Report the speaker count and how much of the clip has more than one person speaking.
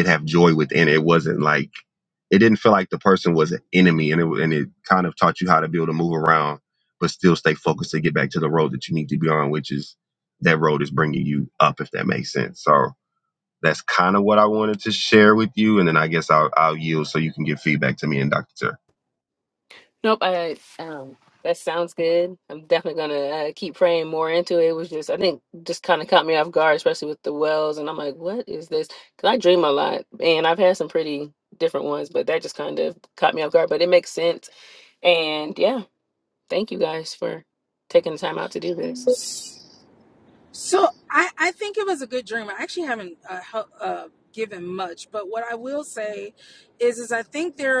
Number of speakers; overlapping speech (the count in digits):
3, no overlap